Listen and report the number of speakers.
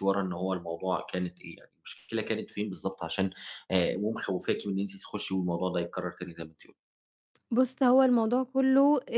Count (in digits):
2